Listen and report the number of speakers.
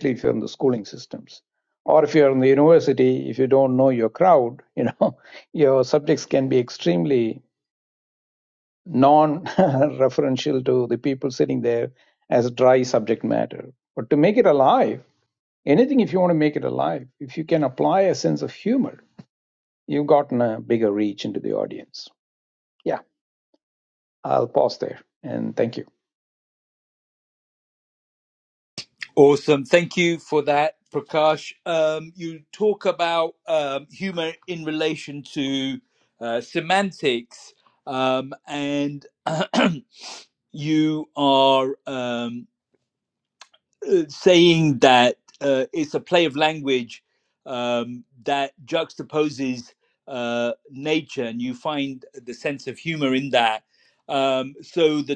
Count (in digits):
2